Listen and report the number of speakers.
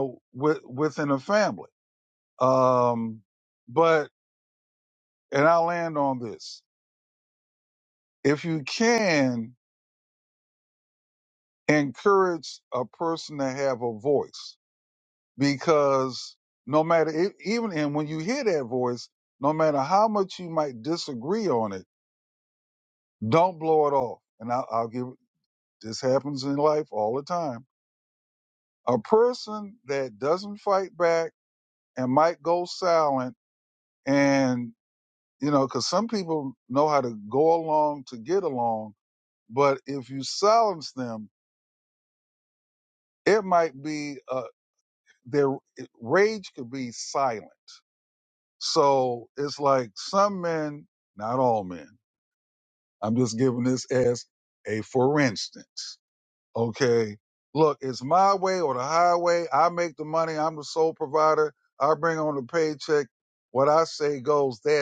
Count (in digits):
1